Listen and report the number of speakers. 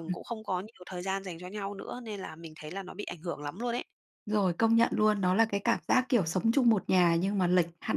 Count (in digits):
2